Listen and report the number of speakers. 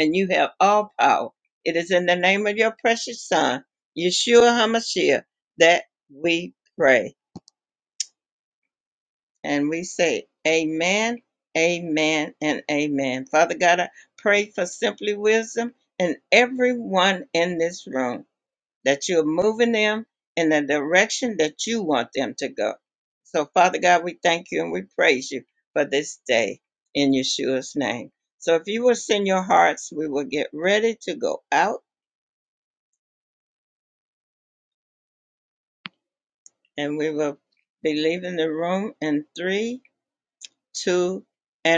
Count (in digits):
1